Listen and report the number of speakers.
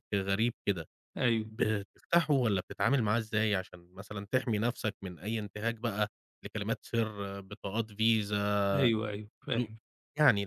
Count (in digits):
2